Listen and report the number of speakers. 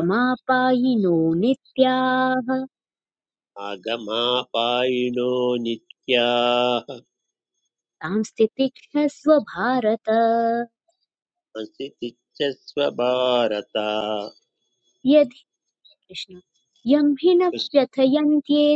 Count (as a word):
two